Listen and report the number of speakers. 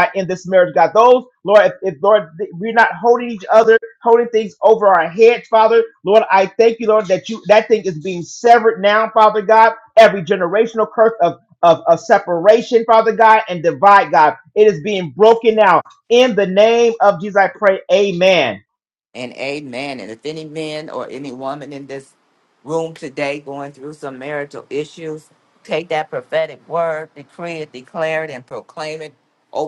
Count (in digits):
2